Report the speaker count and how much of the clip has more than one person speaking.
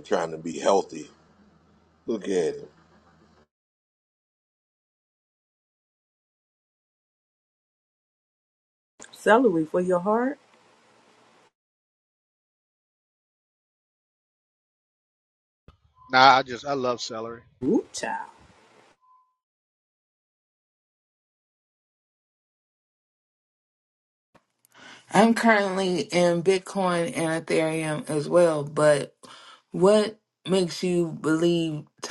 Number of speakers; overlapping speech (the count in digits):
4, no overlap